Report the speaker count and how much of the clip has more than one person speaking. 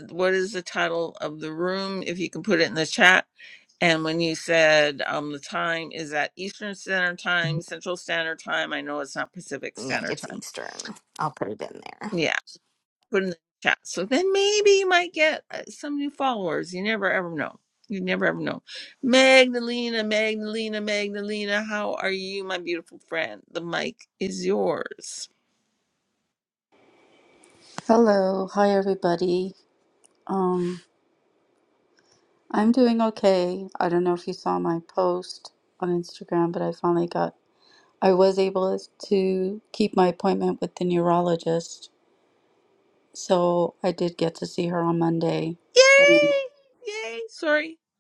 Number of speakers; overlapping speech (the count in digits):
3, about 2%